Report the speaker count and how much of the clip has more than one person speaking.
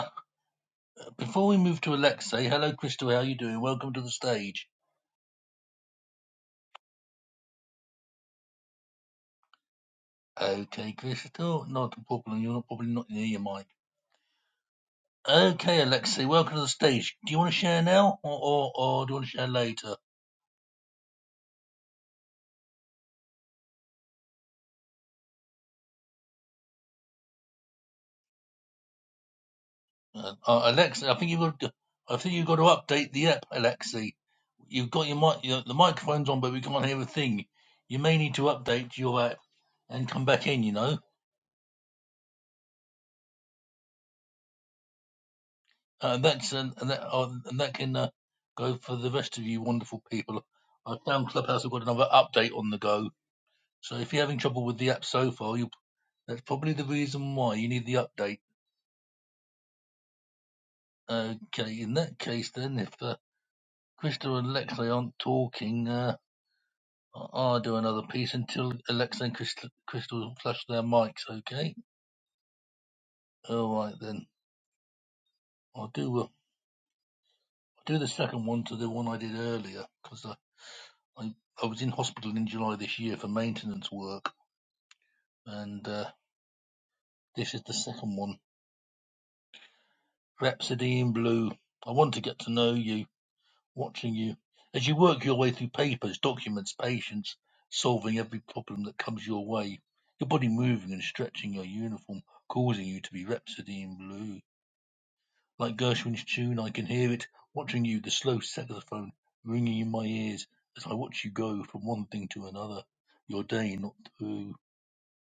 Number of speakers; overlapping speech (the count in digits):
1, no overlap